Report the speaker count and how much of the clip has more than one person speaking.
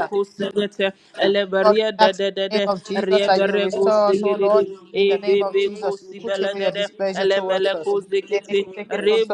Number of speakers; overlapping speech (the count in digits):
2, about 72%